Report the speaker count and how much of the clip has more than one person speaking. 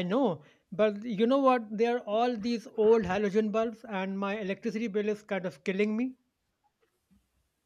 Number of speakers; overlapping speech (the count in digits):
1, no overlap